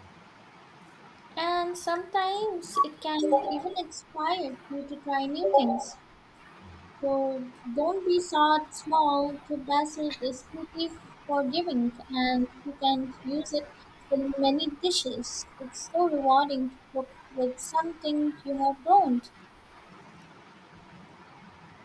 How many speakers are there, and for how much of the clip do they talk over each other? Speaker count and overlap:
1, no overlap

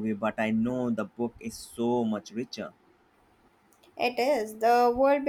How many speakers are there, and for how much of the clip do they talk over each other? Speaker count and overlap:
2, no overlap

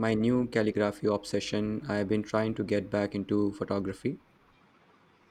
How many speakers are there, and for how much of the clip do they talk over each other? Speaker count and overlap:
1, no overlap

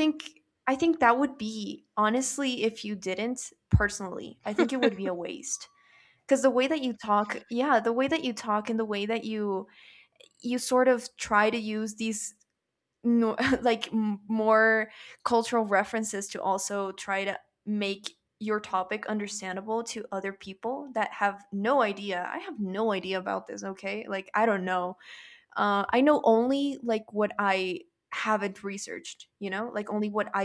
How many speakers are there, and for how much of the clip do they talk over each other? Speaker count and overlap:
1, no overlap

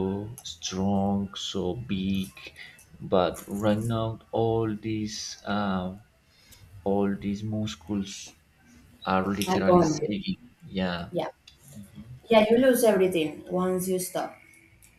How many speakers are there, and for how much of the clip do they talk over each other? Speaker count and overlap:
2, about 4%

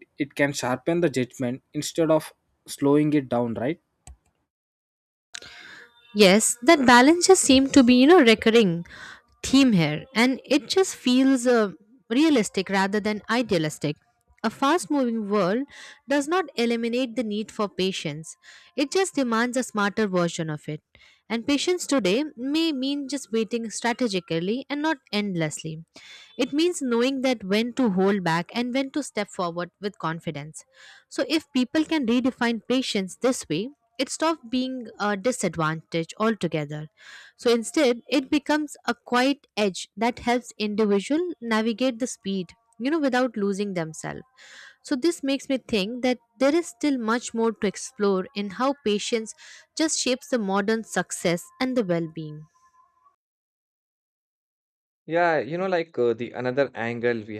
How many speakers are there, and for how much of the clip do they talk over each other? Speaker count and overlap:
3, no overlap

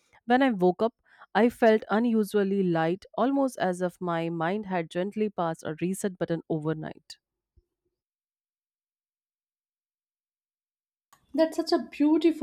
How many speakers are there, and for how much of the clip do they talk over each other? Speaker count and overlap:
2, no overlap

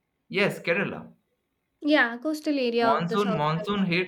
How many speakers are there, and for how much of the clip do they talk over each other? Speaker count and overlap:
2, about 22%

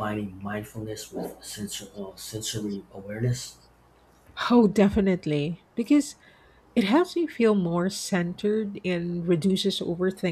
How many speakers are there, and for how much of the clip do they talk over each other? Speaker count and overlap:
2, no overlap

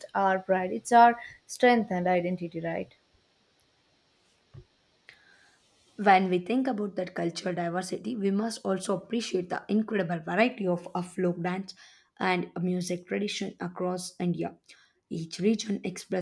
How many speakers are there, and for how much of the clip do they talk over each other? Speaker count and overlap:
2, no overlap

